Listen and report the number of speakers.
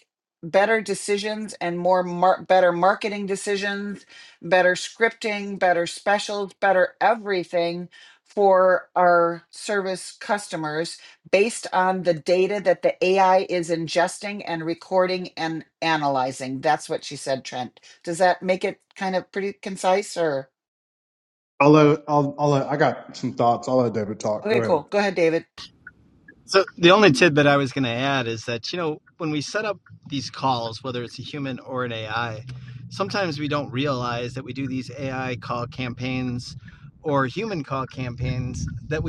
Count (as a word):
three